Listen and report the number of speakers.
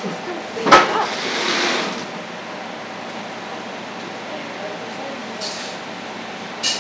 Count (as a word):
one